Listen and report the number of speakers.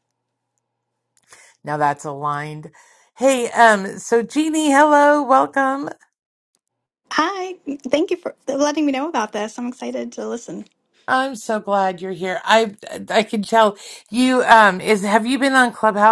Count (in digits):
2